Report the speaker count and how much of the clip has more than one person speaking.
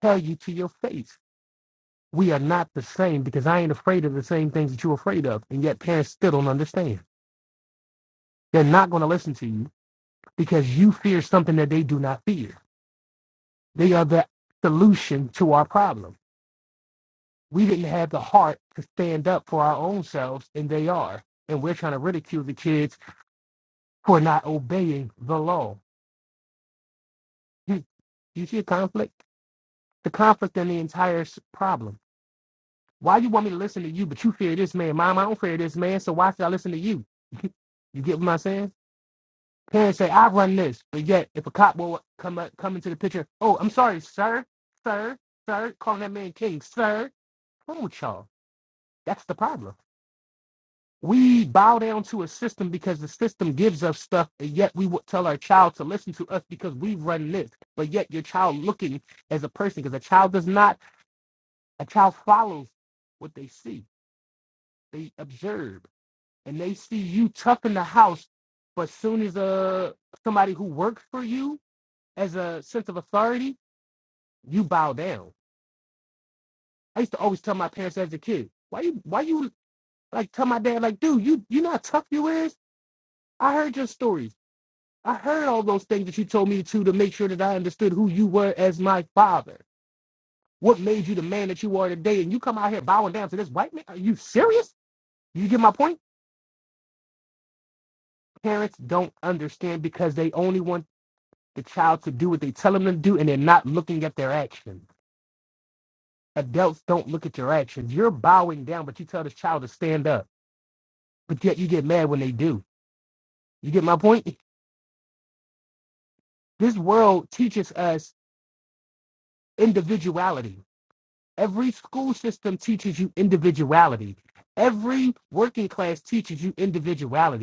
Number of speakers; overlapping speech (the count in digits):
1, no overlap